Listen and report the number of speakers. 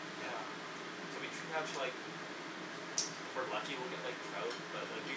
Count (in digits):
1